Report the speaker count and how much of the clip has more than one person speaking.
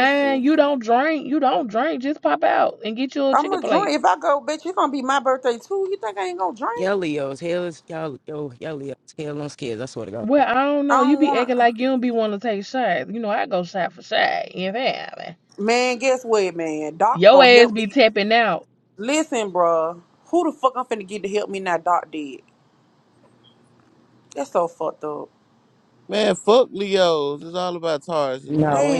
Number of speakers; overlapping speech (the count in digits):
4, about 11%